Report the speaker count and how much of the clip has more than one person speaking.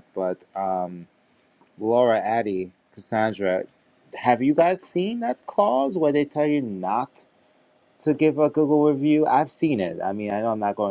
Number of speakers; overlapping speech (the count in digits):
1, no overlap